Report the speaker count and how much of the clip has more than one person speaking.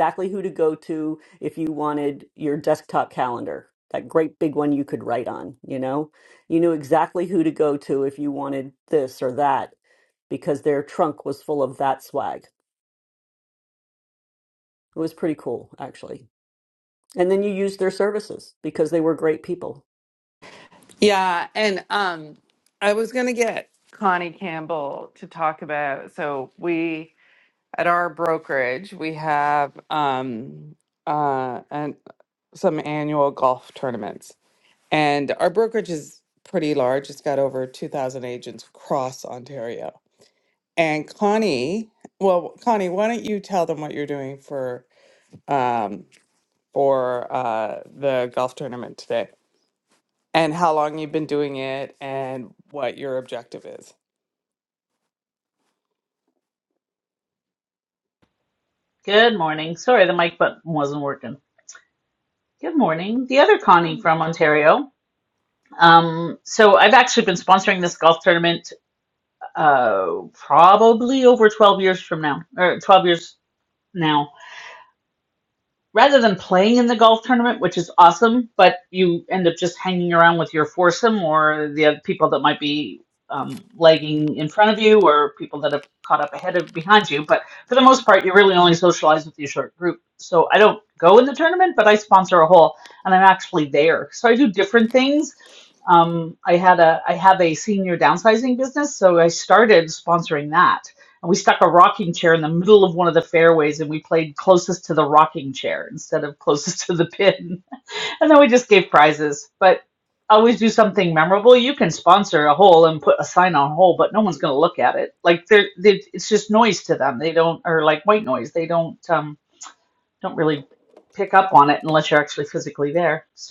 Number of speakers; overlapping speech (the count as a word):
three, no overlap